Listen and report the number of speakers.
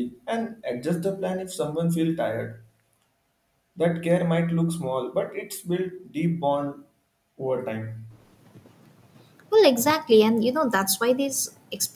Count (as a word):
two